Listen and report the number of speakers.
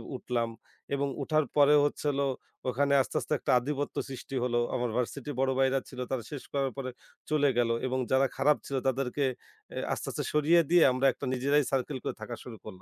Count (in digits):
1